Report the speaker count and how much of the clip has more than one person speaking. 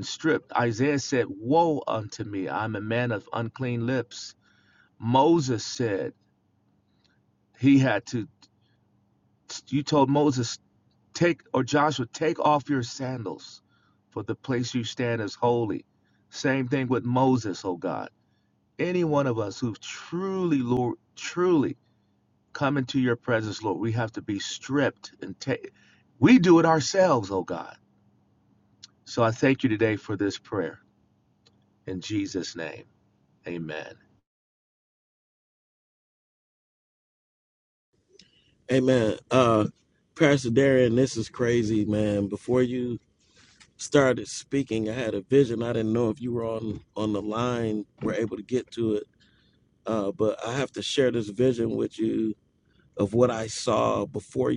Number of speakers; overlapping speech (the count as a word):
two, no overlap